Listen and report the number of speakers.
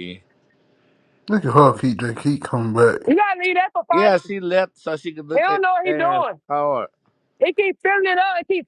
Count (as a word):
three